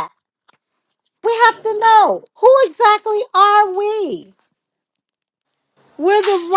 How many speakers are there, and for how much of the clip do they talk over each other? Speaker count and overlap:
1, no overlap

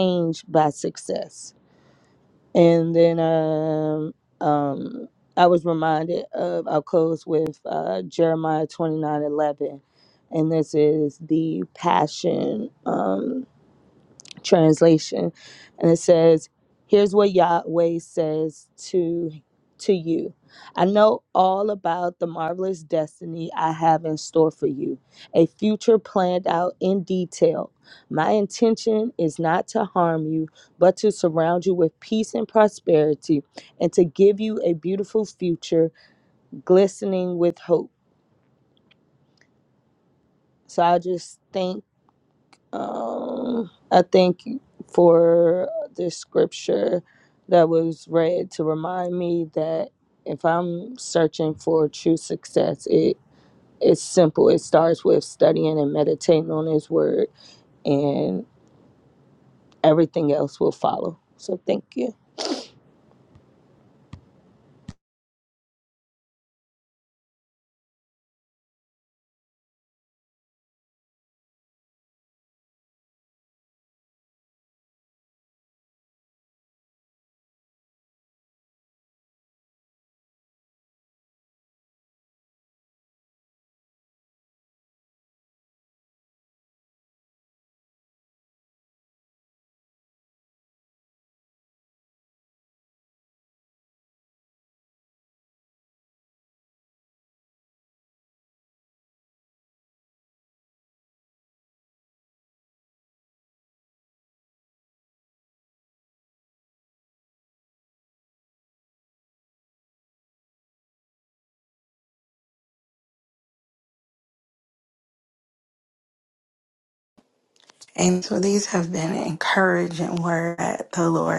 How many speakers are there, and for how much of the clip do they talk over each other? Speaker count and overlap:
2, no overlap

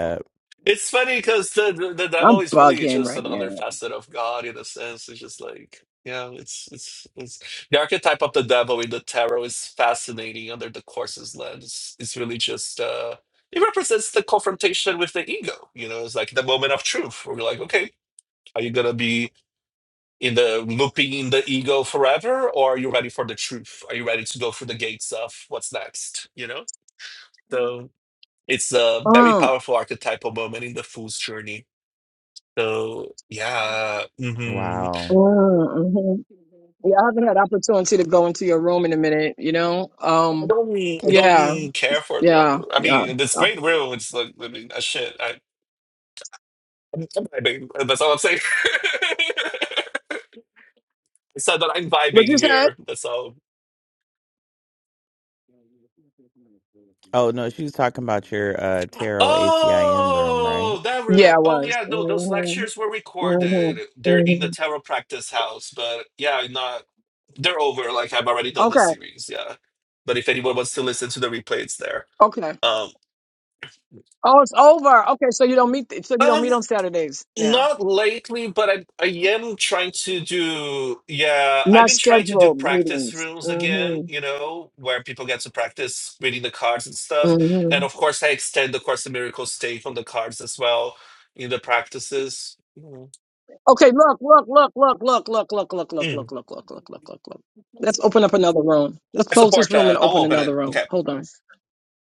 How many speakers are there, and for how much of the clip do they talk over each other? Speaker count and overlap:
3, about 14%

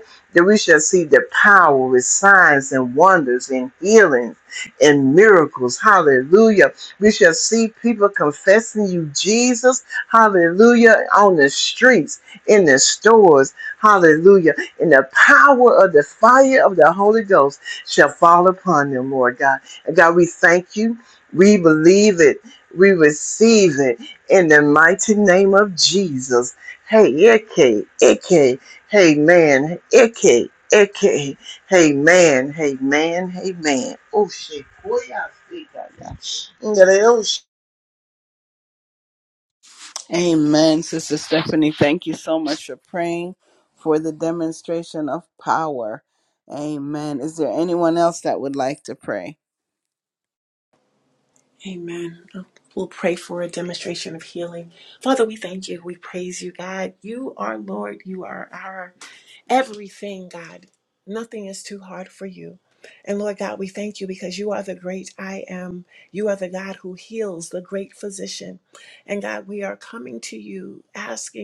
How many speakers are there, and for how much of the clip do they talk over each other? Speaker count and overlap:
3, no overlap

